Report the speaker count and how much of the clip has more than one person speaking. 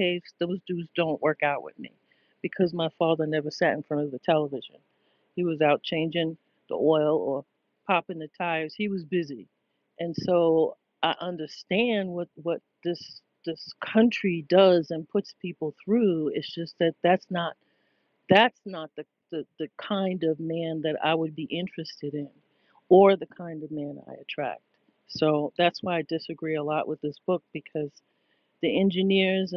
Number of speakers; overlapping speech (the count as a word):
one, no overlap